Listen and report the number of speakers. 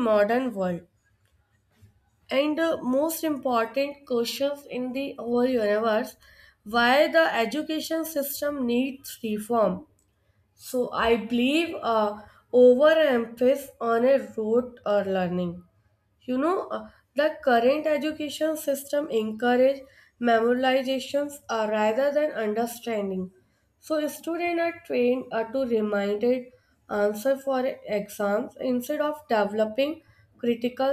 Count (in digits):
1